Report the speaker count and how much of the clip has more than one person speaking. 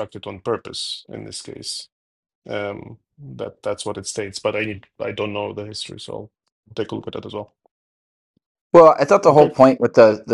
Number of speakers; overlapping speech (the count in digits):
2, about 3%